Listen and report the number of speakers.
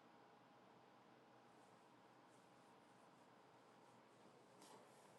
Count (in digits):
0